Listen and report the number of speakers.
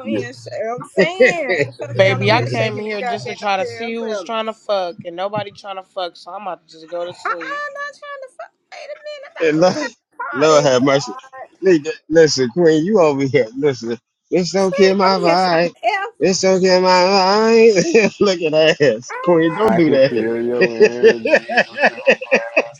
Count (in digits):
4